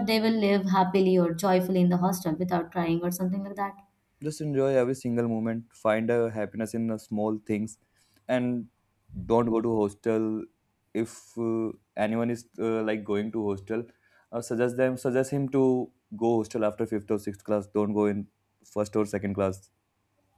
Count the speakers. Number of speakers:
two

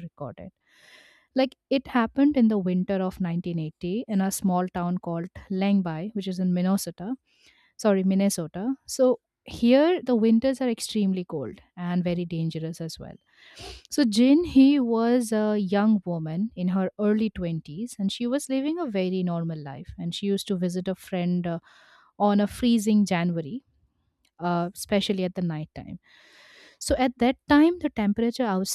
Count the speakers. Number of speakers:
one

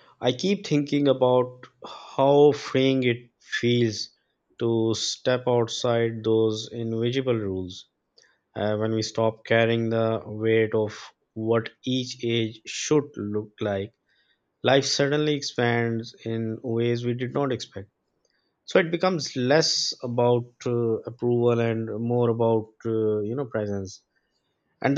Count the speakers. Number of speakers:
one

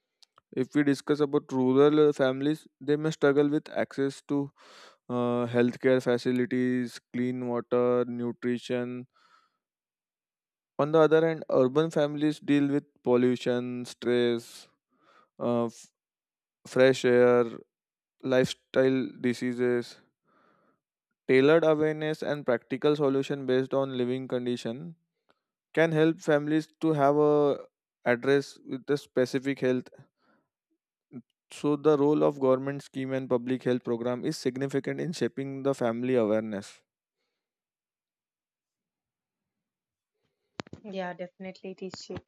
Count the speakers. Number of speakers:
two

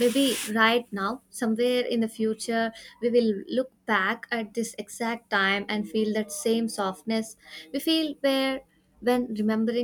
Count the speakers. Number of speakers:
one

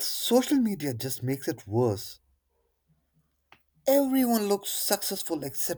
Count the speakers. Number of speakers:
one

